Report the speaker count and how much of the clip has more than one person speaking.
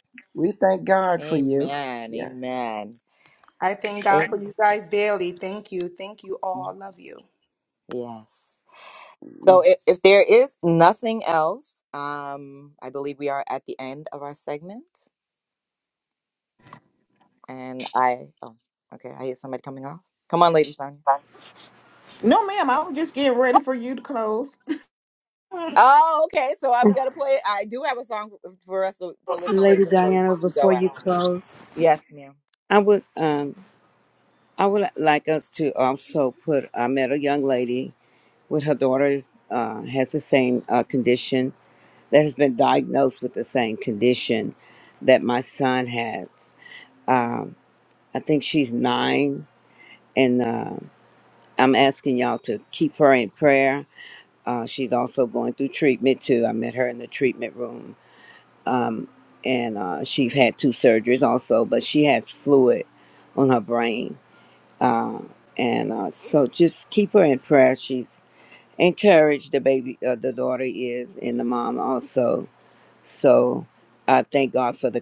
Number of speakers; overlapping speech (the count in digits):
5, about 3%